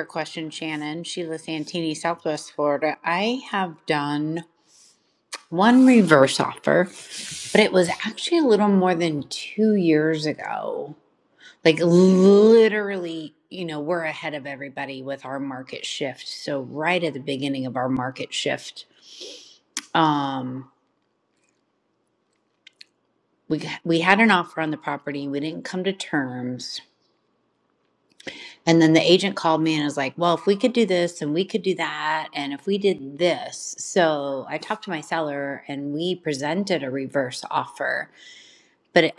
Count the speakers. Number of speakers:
1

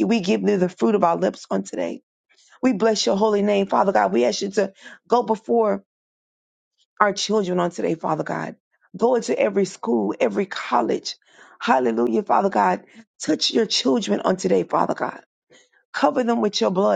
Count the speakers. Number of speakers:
1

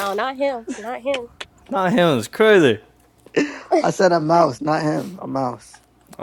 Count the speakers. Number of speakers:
3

